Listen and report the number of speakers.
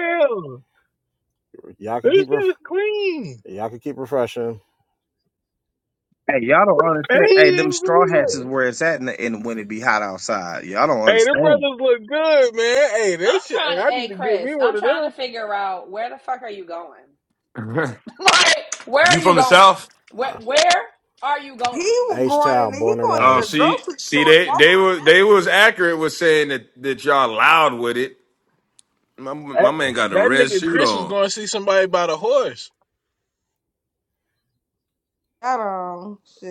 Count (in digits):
6